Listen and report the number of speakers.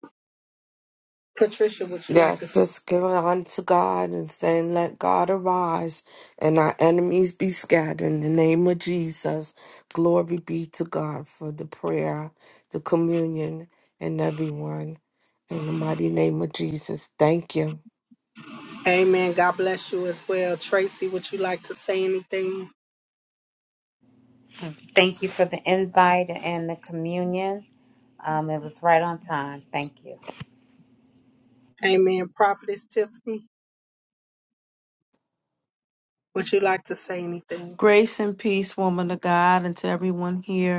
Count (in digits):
4